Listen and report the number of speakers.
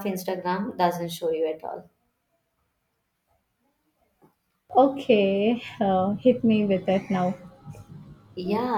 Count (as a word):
two